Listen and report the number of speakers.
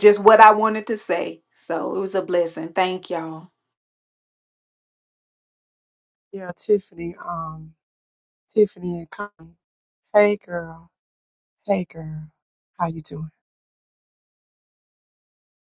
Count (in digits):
2